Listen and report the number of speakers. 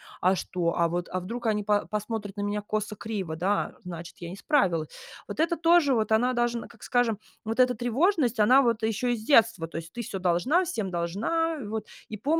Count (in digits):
1